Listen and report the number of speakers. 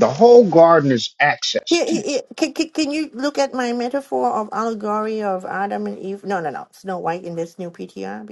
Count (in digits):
2